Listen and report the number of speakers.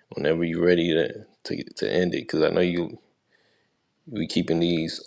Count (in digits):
1